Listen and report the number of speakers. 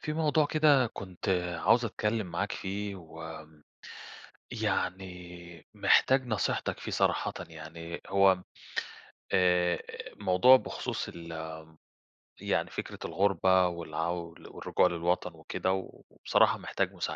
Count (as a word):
one